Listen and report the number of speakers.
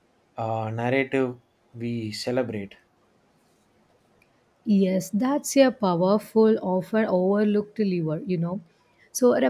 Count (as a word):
two